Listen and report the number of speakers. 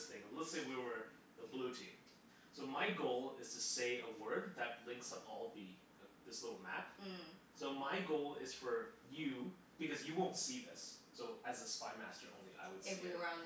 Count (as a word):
two